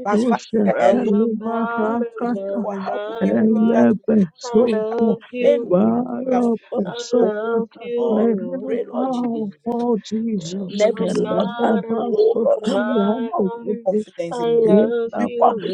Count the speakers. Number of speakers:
3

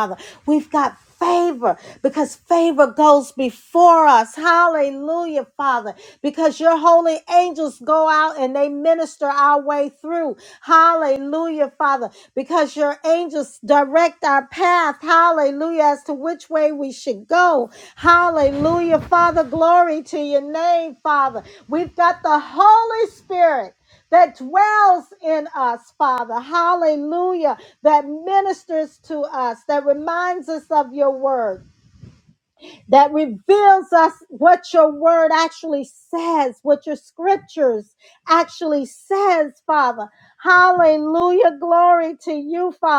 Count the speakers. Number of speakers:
1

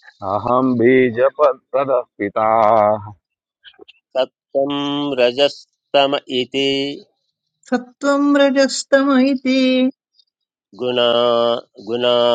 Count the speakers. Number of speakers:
3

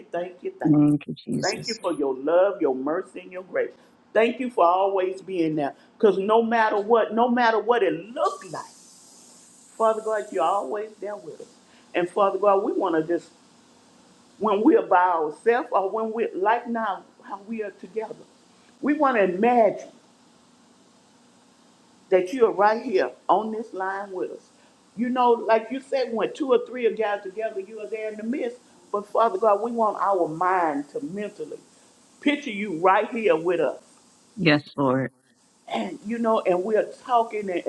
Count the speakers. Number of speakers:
2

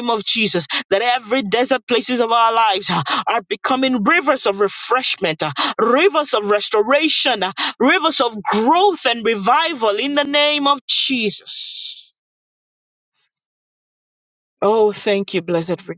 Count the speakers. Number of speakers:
1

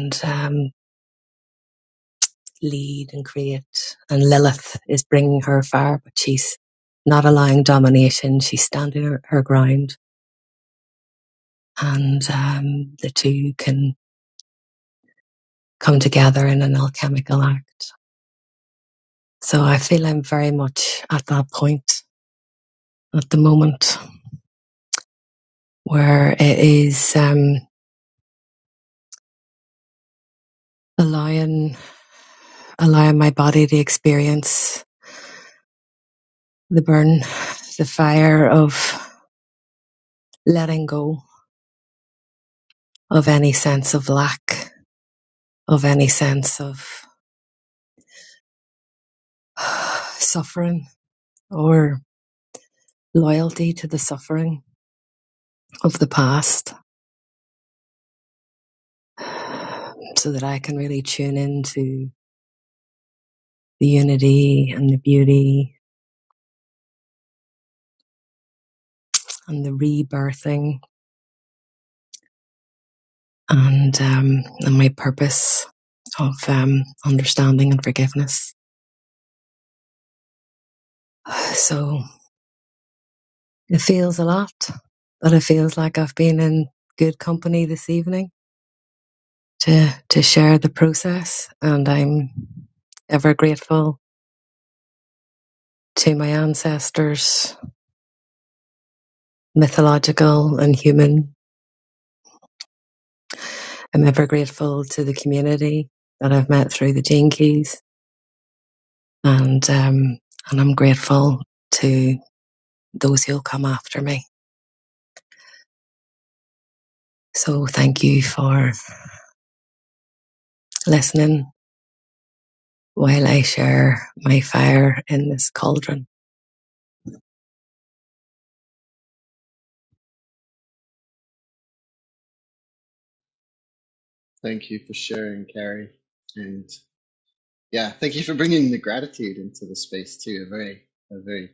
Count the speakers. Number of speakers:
2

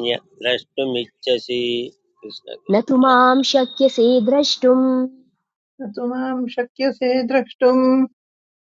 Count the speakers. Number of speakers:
3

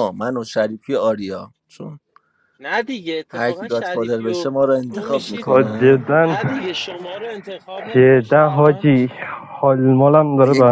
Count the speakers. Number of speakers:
3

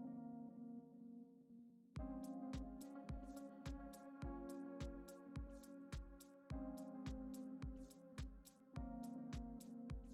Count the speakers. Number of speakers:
0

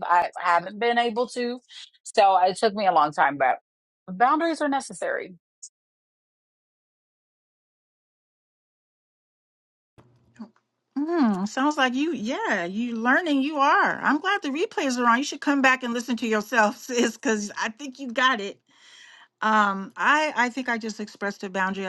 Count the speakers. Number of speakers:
2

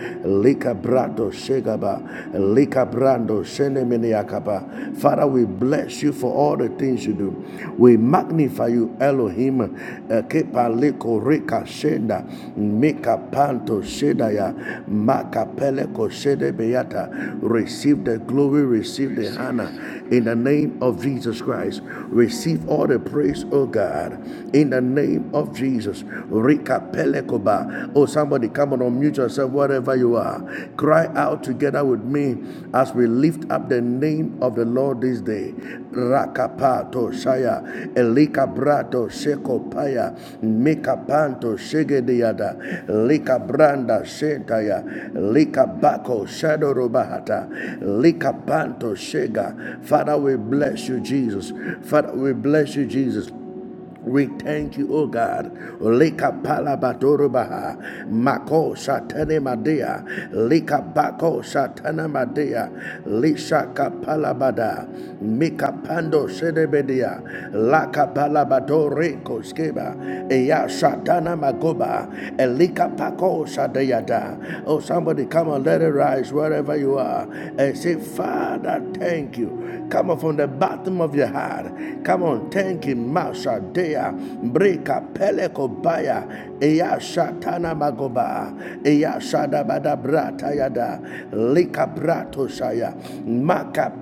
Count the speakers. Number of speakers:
1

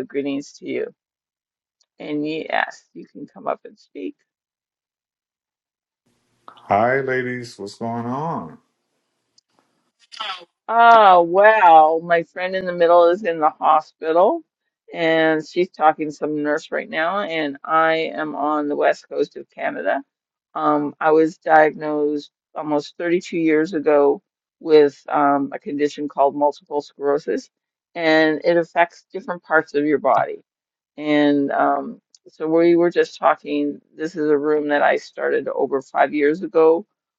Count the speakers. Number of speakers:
2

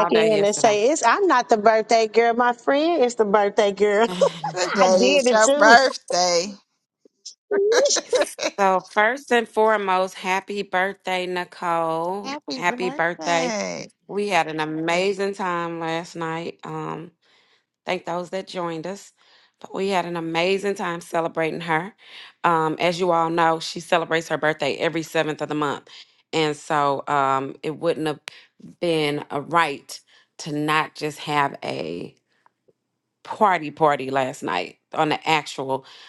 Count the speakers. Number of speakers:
3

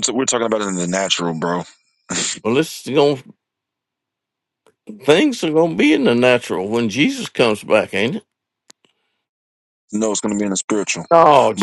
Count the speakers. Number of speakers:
2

